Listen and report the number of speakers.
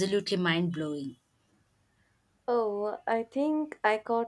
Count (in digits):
2